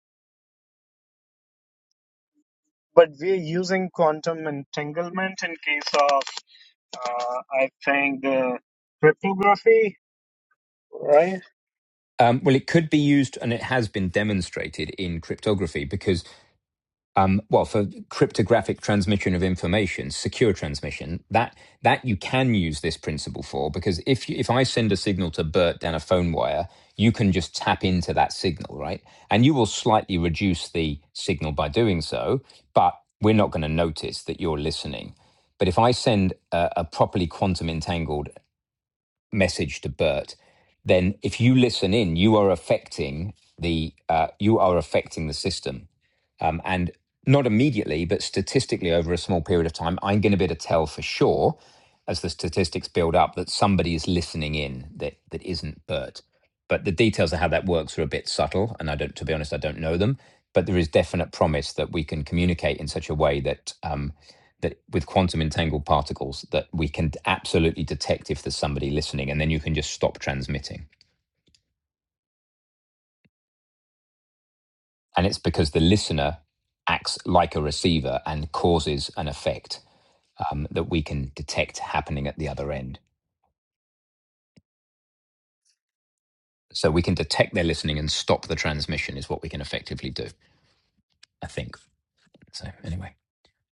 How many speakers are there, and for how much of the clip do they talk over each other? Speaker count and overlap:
2, no overlap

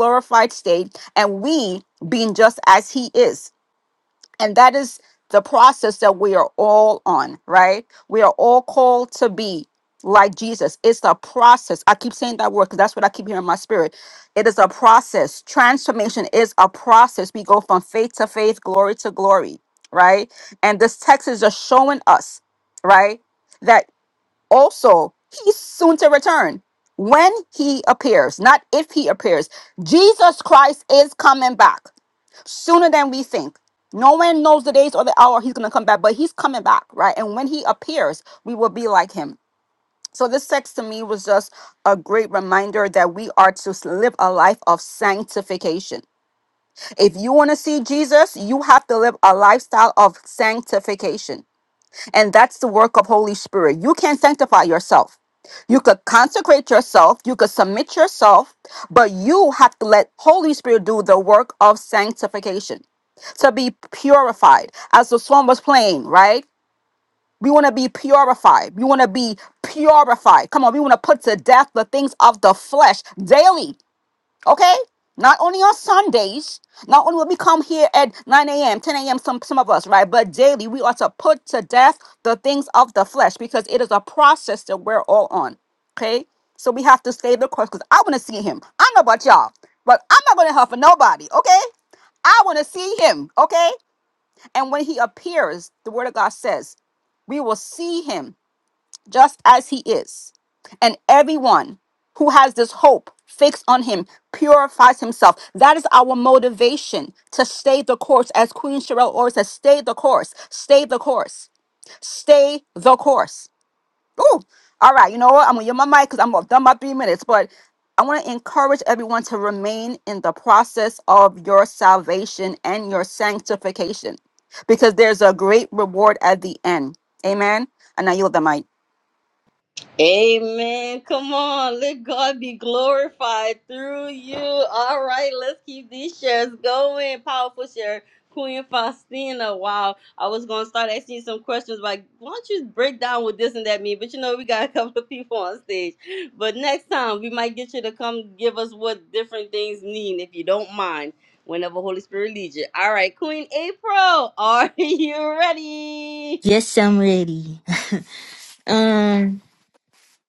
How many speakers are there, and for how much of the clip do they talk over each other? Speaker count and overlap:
3, no overlap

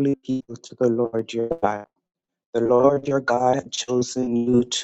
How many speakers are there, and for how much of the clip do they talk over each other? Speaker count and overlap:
1, no overlap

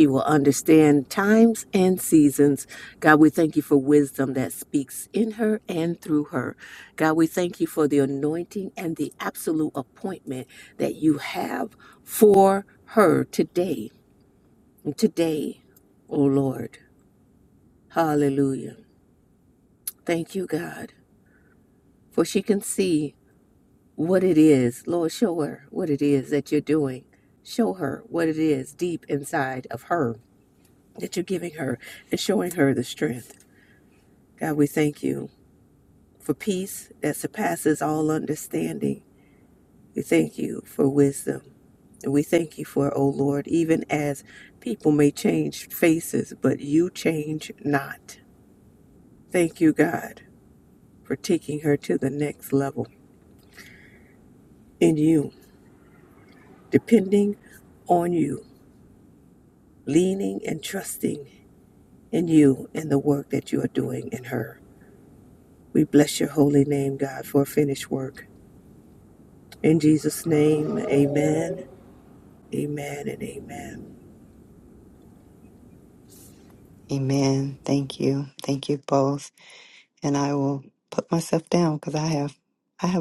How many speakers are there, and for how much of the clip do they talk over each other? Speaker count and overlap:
2, no overlap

